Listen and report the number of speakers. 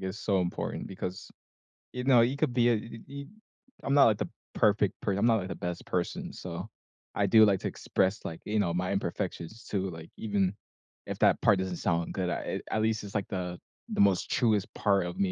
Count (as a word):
one